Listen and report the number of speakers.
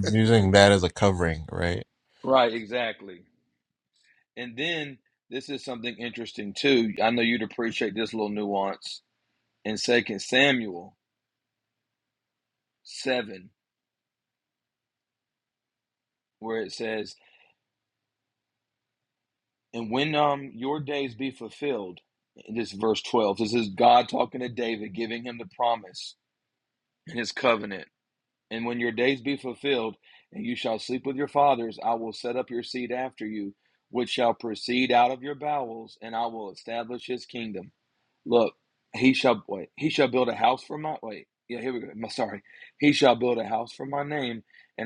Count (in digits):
2